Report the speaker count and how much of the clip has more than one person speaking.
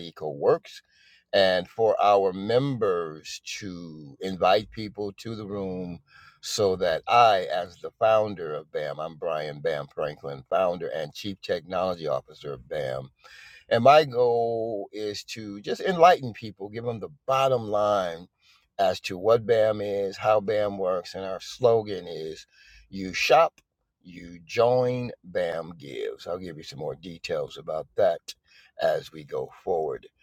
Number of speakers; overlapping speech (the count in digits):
1, no overlap